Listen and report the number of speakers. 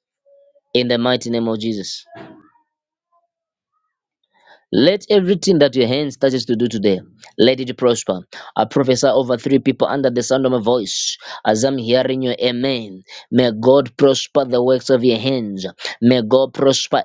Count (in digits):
1